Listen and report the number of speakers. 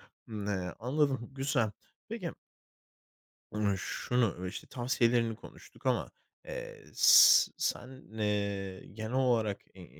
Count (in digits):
1